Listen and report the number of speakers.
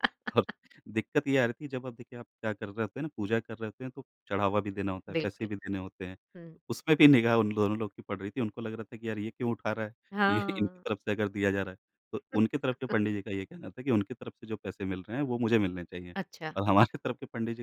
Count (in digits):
2